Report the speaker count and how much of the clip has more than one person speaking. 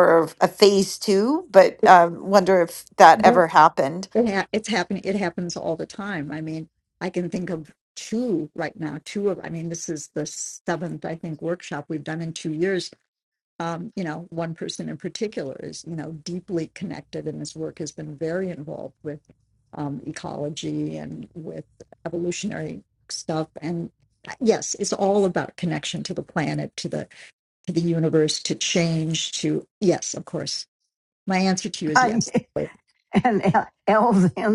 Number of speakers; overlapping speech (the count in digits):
3, about 1%